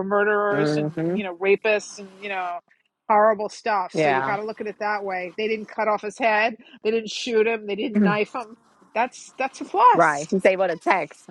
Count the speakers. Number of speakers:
two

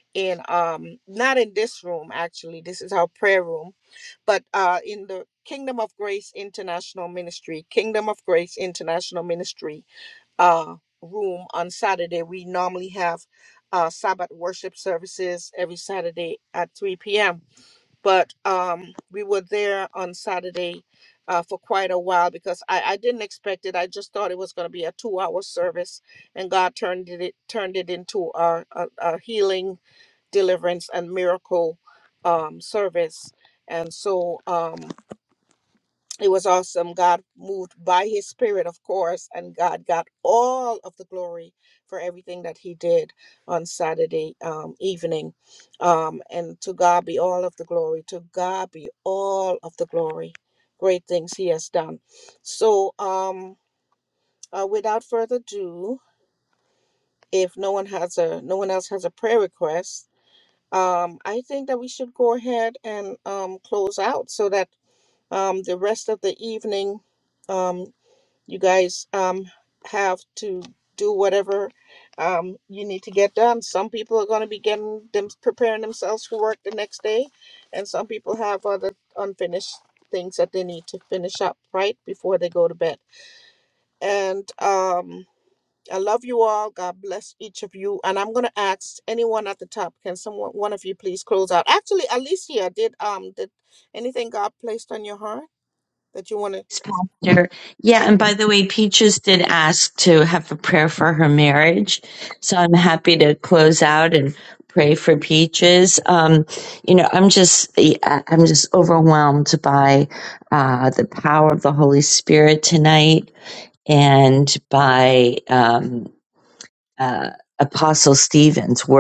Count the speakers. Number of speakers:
two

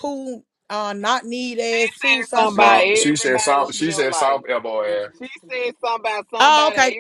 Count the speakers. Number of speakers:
three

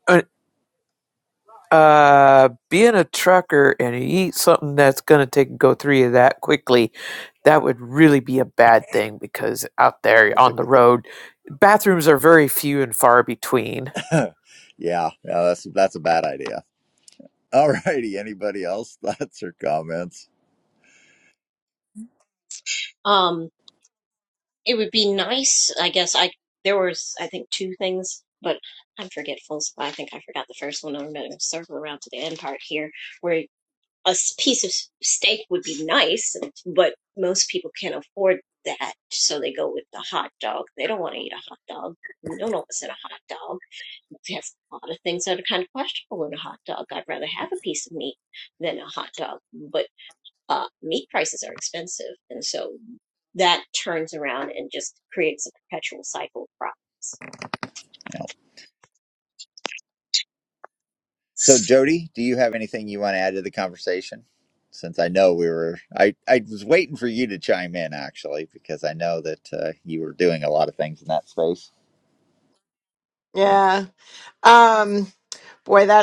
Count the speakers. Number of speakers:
four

